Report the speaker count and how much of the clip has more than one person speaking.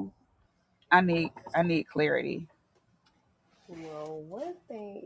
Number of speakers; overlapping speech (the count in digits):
2, no overlap